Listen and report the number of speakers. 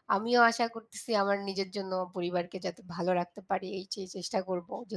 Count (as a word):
one